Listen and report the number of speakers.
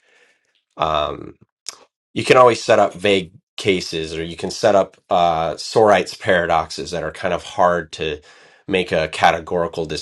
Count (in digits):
1